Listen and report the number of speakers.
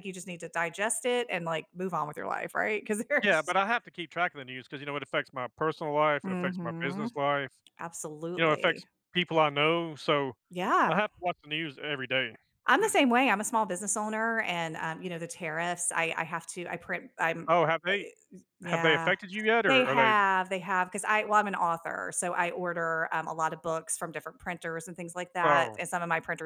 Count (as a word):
two